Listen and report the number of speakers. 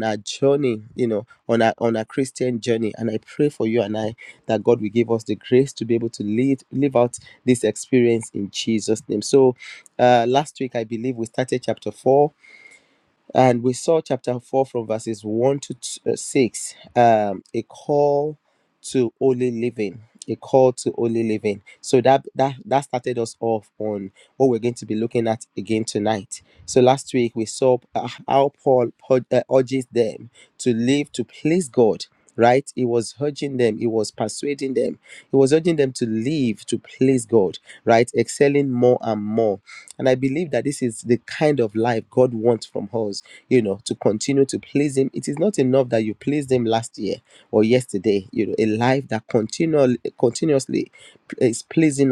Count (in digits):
1